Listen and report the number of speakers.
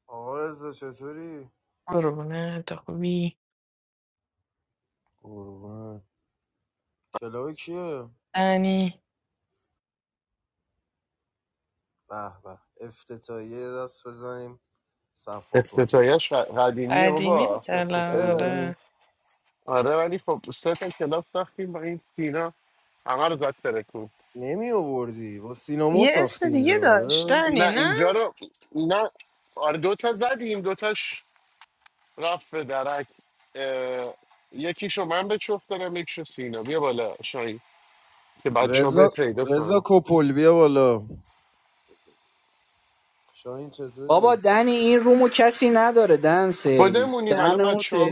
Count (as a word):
four